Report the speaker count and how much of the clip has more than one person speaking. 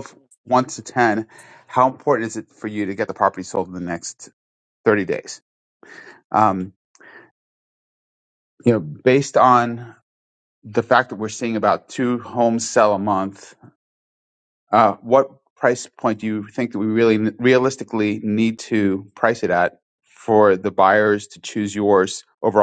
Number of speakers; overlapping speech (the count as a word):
one, no overlap